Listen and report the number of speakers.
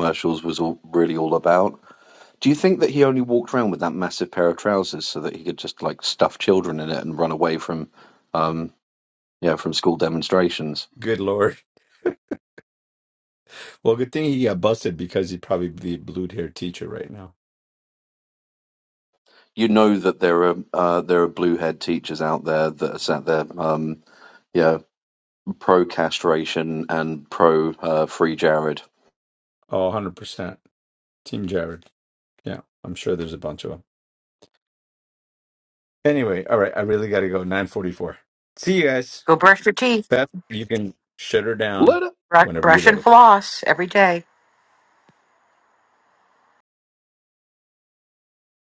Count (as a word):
three